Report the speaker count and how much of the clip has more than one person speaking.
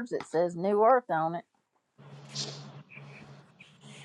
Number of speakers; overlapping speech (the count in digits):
1, no overlap